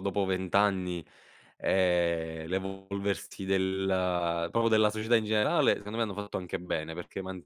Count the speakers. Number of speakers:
one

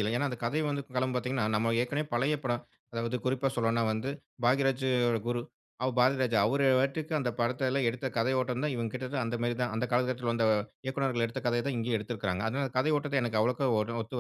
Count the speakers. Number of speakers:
one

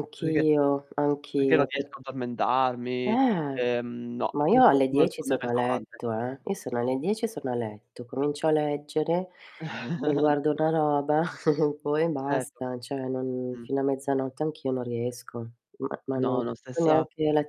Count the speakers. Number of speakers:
two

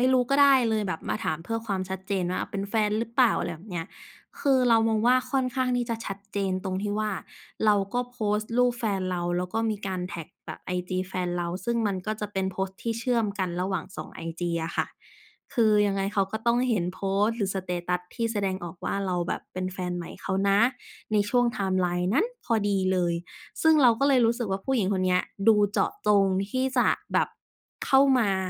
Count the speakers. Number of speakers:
one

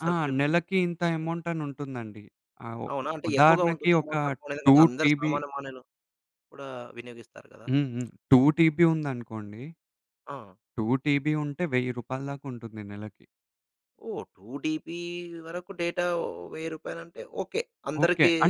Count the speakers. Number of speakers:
two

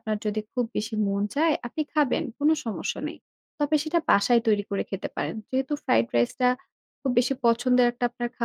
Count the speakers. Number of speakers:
one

